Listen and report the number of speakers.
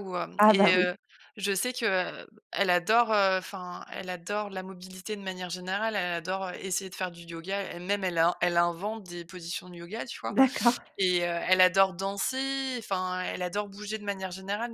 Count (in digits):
2